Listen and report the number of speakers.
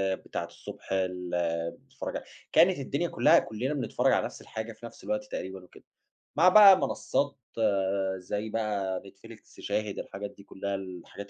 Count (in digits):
1